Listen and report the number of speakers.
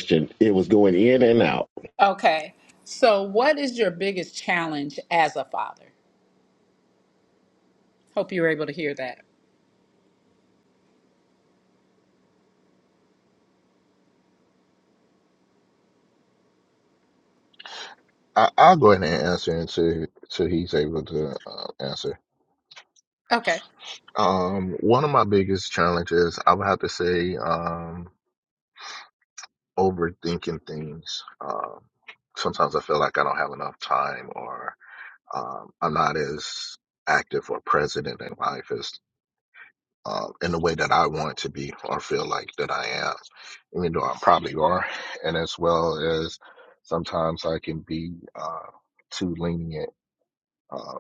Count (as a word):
three